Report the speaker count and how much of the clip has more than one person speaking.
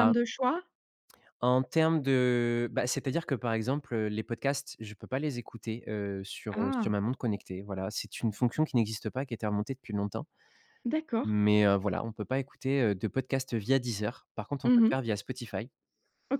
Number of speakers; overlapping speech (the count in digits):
2, about 6%